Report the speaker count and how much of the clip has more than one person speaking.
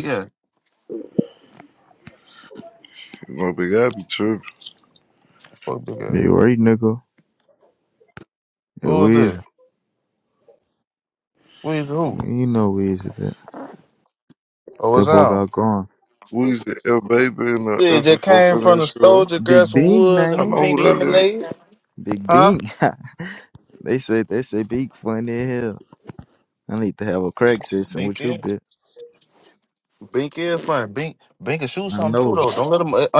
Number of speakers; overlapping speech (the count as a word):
three, about 17%